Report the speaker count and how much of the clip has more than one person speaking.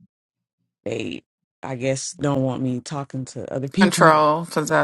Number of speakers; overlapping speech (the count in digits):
2, about 8%